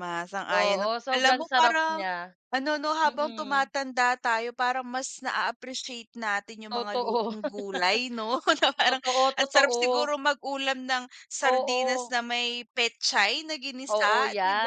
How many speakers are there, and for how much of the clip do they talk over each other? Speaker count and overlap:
two, about 37%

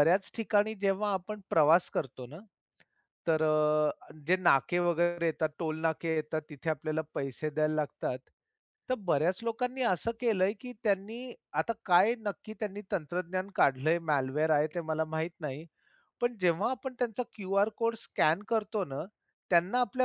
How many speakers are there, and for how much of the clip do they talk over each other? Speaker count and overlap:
one, no overlap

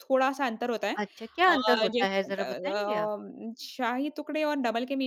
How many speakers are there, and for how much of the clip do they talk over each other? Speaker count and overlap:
two, about 33%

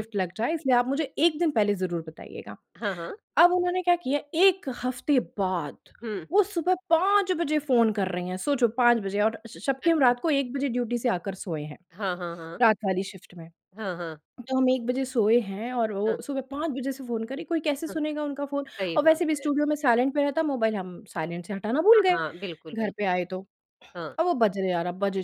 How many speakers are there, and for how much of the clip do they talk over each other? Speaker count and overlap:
two, about 7%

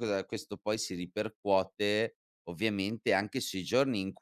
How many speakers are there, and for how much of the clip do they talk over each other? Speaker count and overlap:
one, no overlap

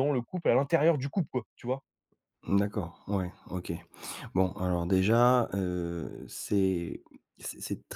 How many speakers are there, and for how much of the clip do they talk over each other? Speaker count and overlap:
two, no overlap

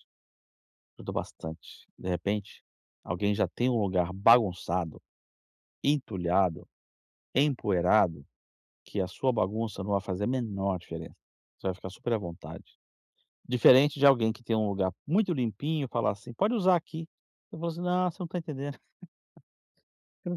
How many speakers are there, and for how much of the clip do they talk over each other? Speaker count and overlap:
one, no overlap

